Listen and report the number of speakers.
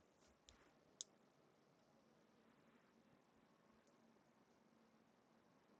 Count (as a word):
zero